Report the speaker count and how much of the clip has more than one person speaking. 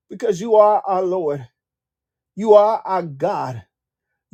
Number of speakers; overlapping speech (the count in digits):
1, no overlap